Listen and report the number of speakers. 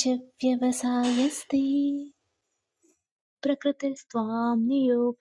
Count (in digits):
2